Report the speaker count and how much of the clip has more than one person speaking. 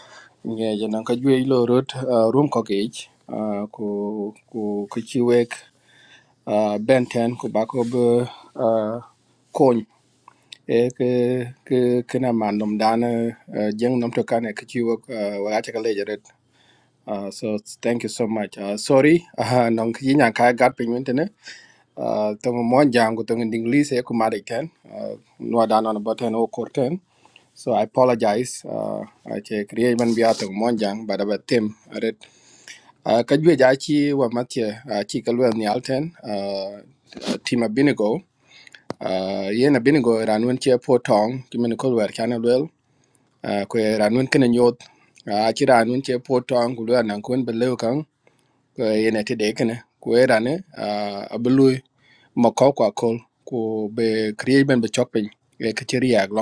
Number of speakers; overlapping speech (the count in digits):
1, no overlap